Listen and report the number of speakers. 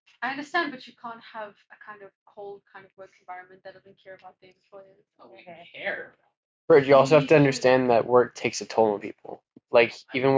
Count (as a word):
three